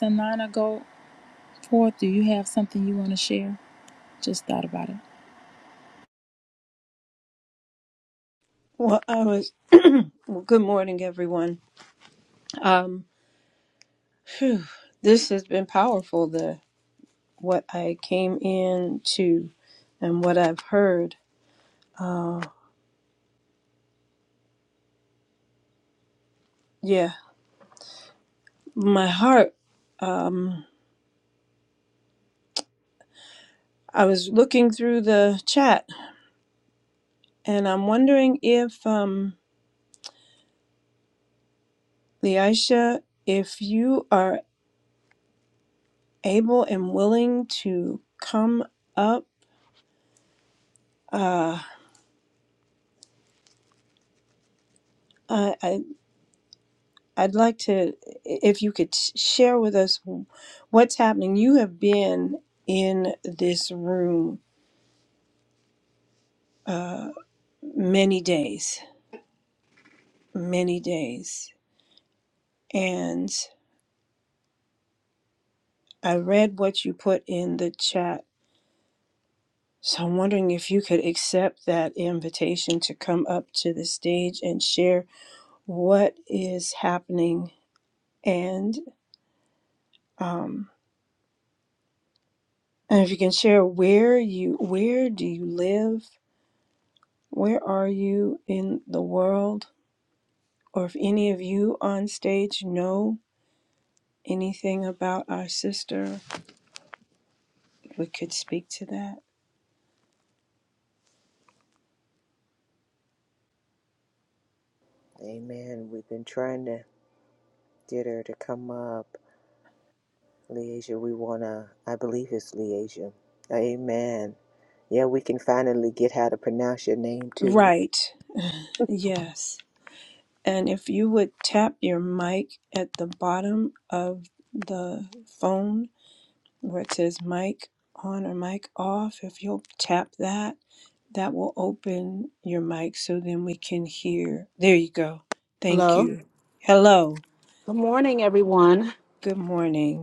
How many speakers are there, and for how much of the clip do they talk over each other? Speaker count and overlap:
4, under 1%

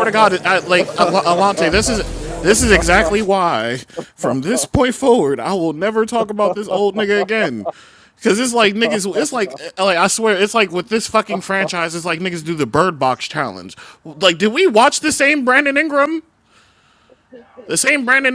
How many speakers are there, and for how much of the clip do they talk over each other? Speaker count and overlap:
1, no overlap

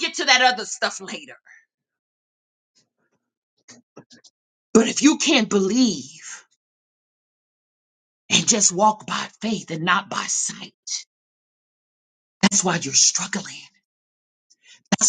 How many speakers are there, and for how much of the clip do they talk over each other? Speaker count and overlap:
1, no overlap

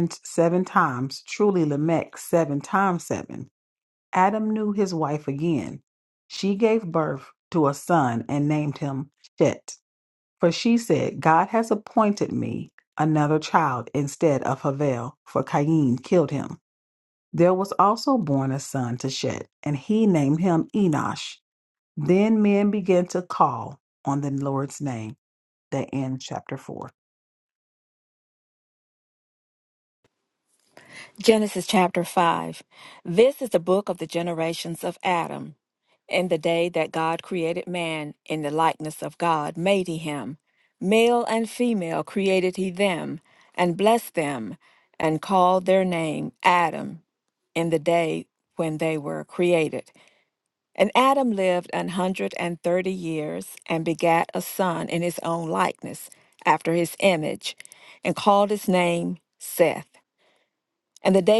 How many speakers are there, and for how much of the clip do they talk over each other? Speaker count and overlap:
2, no overlap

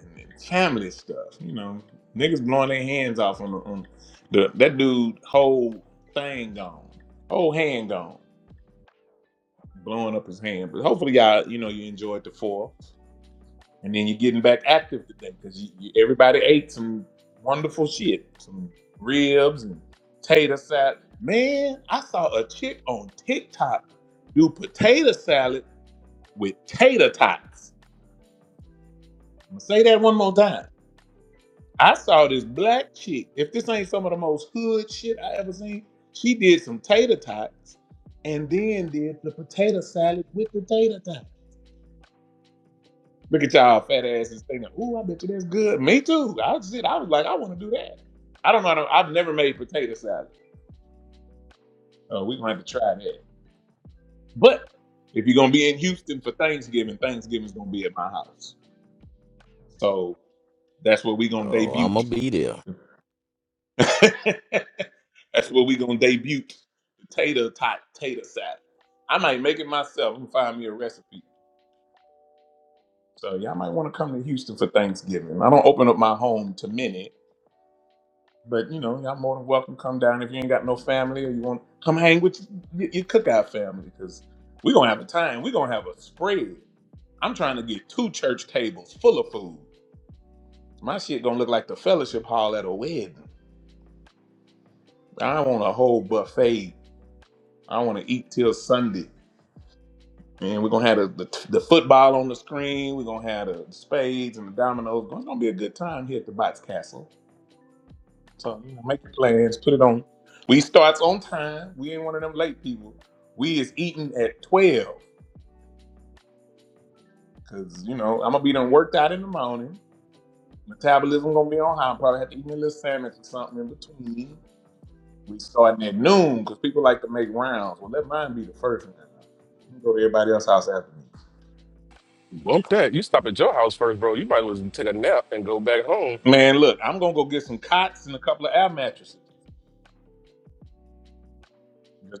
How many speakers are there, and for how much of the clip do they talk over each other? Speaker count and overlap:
3, under 1%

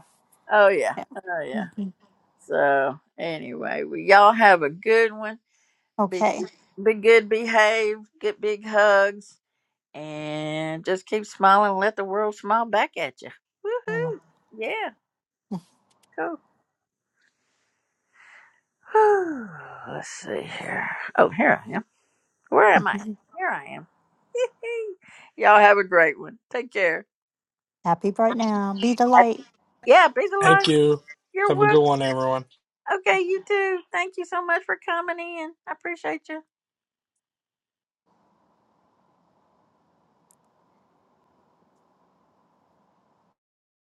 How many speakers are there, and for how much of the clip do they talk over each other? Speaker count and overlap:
3, about 3%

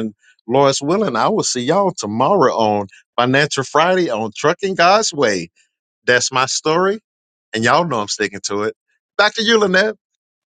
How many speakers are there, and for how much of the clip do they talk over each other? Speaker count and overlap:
1, no overlap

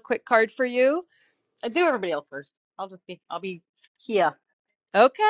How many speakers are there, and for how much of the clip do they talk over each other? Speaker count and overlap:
2, no overlap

